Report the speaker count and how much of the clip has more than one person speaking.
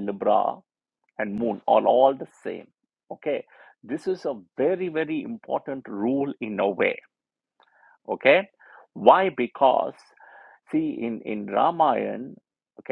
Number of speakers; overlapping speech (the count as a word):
one, no overlap